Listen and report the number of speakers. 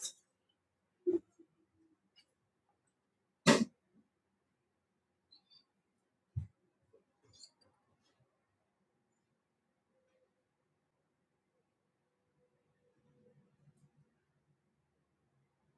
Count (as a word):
zero